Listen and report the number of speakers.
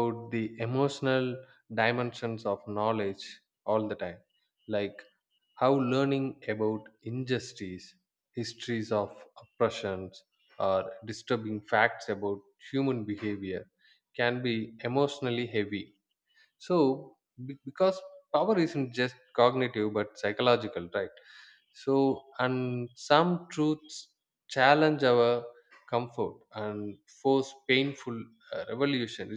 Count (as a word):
one